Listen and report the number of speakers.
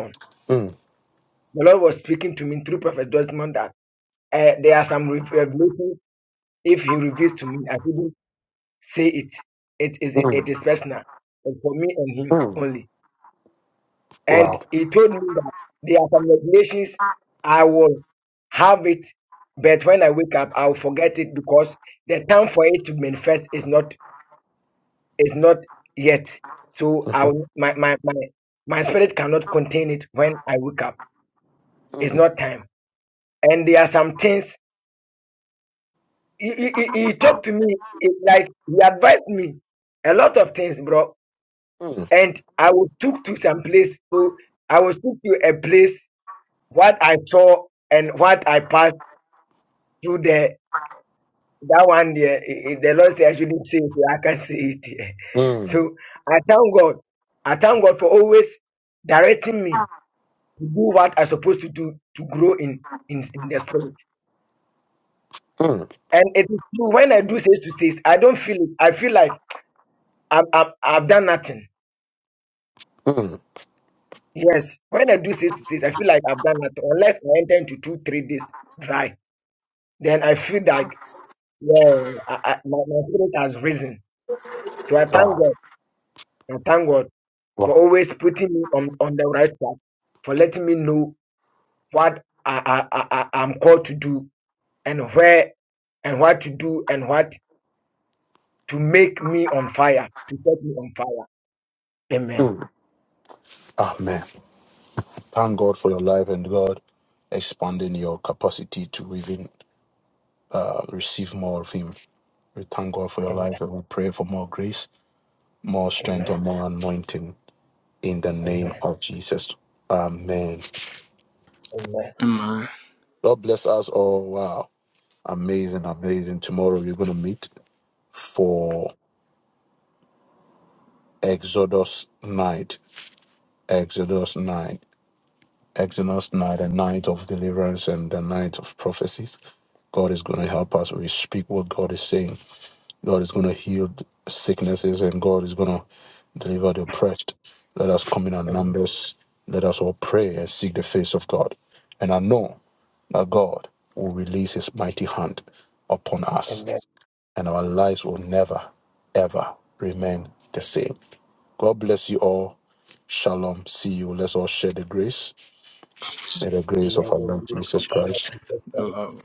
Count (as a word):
three